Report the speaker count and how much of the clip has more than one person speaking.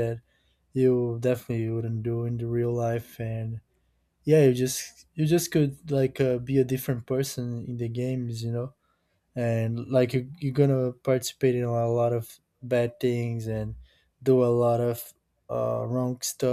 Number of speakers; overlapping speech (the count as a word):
one, no overlap